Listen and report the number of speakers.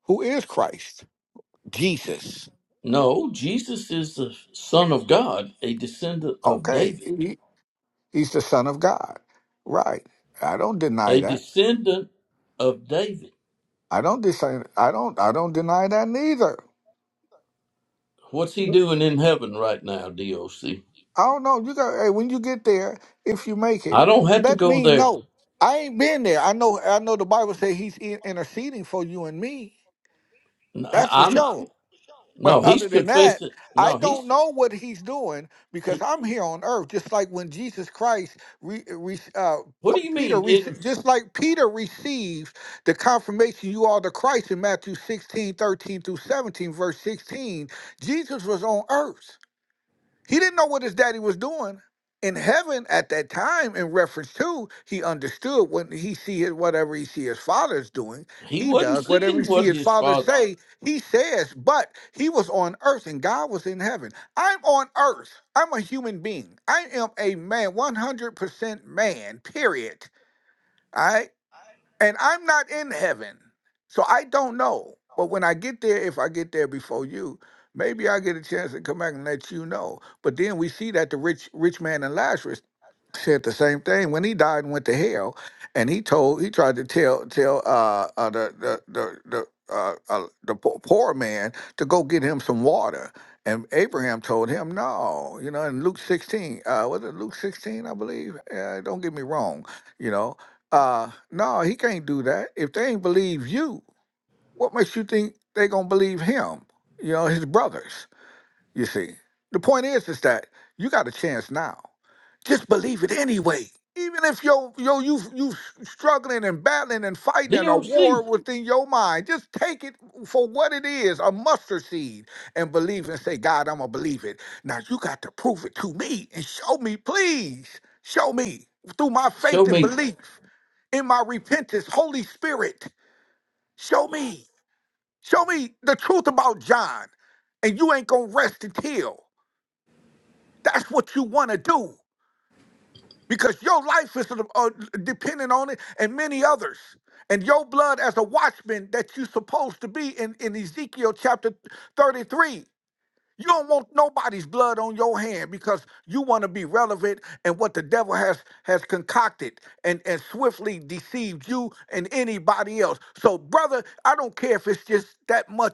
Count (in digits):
2